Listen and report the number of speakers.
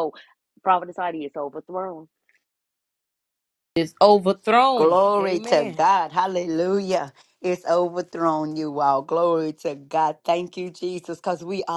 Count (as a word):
three